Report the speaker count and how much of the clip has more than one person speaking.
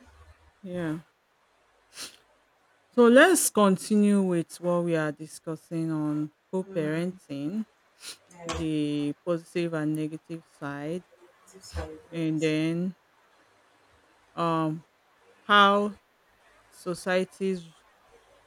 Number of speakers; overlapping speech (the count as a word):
two, about 5%